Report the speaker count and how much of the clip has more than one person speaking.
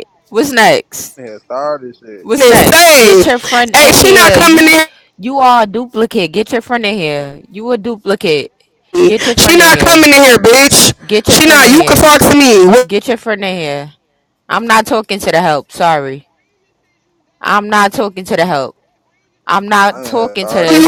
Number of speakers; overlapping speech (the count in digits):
3, about 22%